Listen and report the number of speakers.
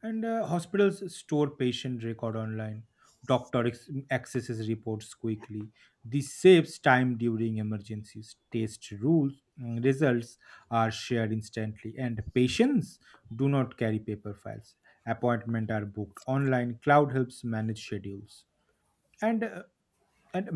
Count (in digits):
1